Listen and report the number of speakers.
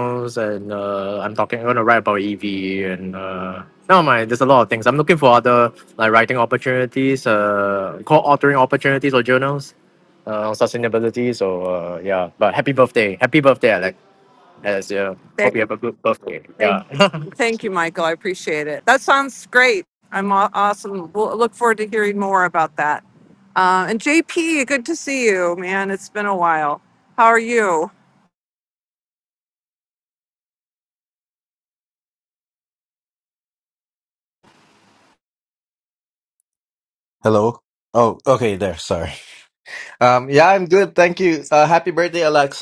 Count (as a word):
three